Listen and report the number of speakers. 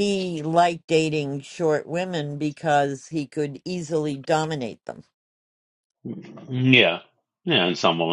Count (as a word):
two